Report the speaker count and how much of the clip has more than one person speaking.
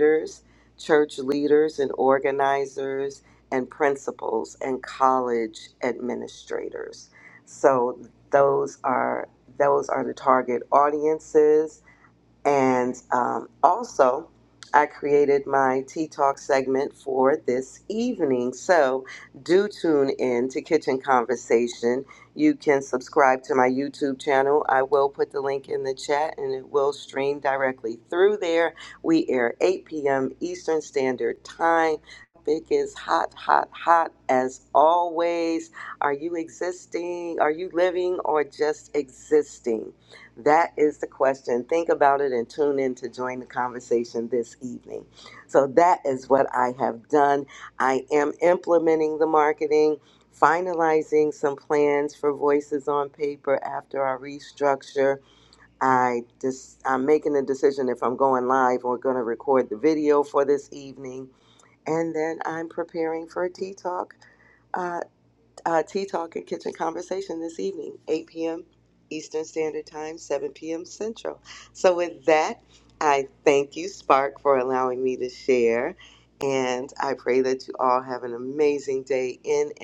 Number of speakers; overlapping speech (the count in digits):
1, no overlap